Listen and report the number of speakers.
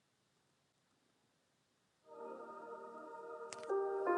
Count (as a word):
zero